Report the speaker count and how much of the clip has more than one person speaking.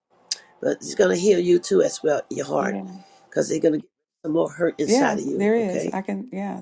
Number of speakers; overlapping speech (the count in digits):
2, about 19%